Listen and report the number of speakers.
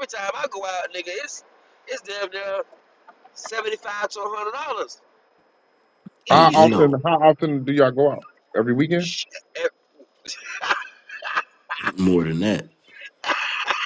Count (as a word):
three